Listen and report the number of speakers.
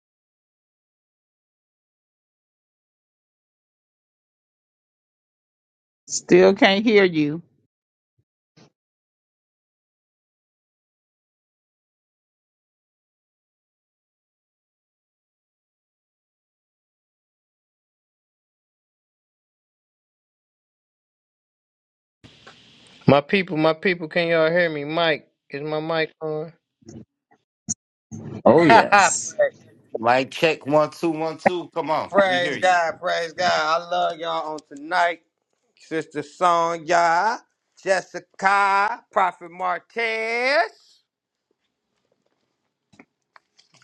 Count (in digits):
3